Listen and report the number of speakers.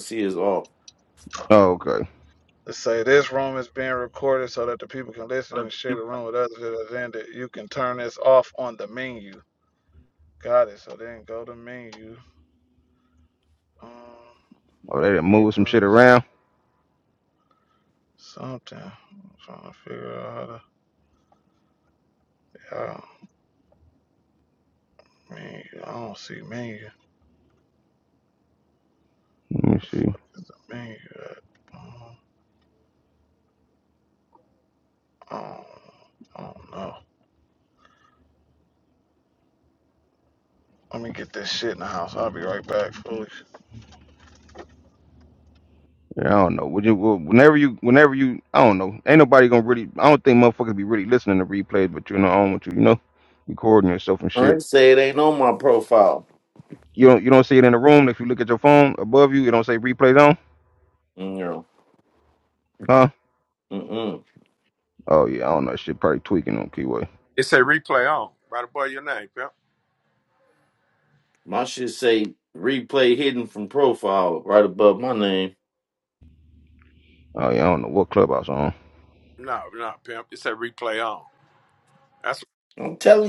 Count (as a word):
four